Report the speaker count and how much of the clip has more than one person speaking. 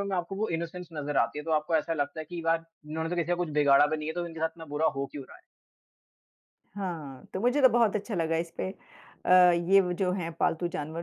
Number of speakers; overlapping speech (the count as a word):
two, no overlap